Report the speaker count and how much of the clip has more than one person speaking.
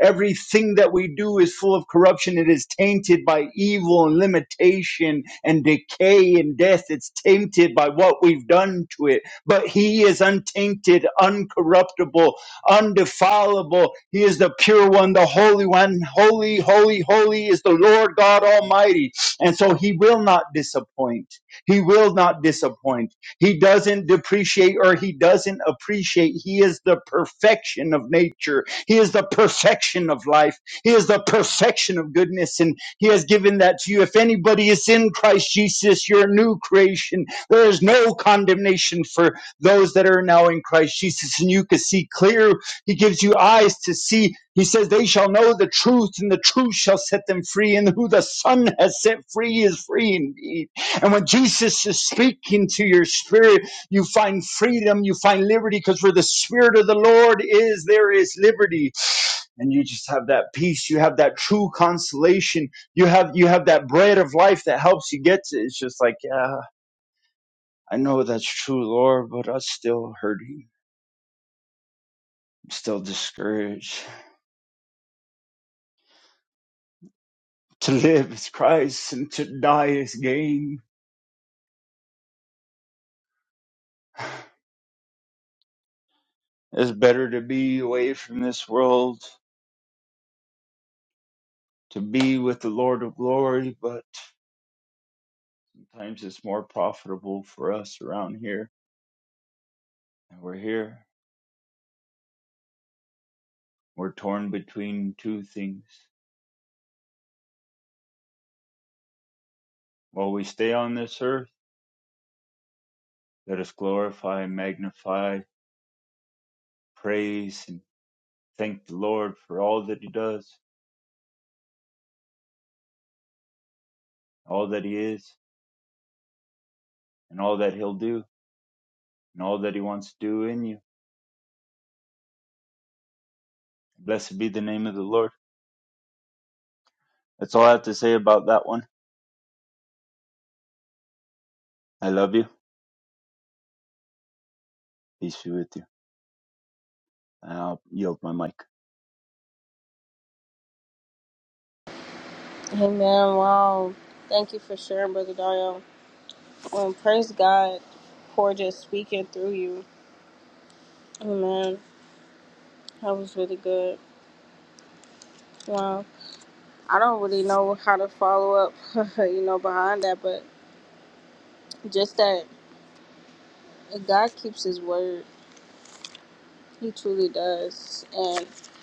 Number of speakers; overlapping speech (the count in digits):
2, no overlap